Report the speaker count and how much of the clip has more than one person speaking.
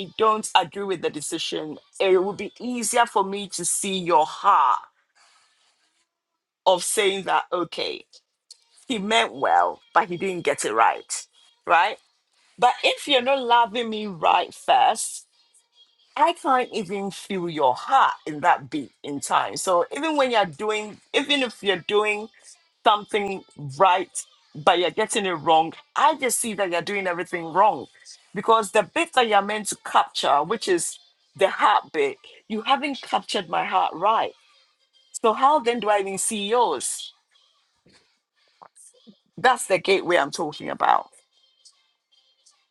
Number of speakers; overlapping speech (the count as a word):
one, no overlap